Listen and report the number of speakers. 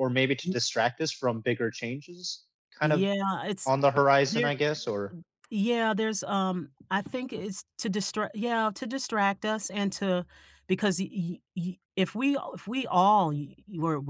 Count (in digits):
2